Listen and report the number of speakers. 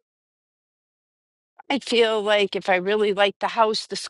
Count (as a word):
one